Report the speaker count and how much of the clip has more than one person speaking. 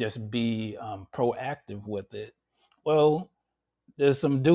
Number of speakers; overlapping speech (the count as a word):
one, no overlap